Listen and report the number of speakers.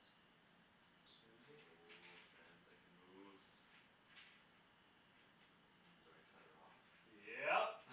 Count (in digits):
2